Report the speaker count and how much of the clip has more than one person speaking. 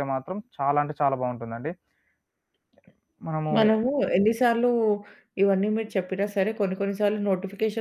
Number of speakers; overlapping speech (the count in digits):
2, about 1%